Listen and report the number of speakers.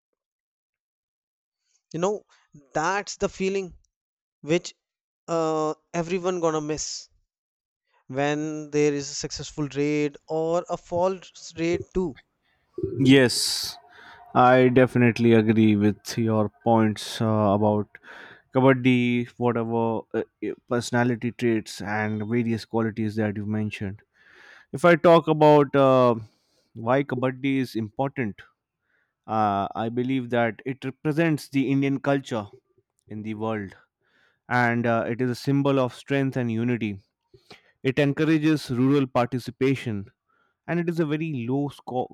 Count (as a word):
two